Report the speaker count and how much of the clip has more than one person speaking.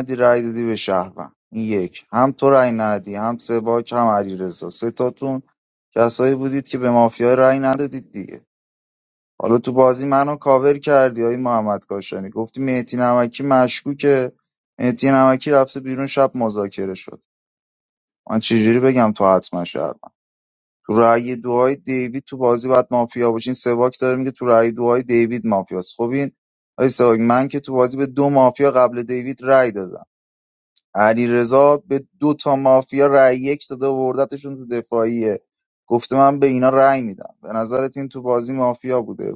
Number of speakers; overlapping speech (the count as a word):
one, no overlap